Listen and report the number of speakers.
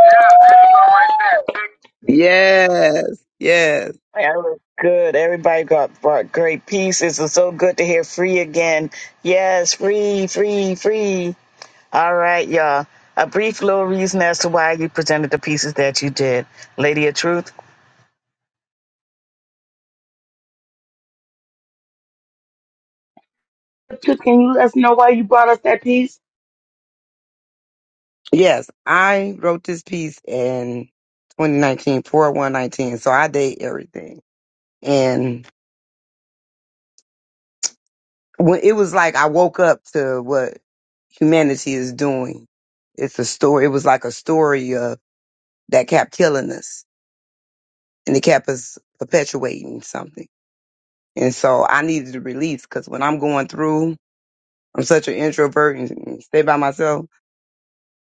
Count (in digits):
4